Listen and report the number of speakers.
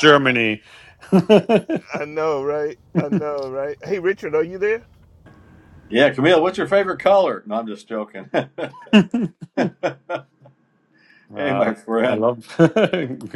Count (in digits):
3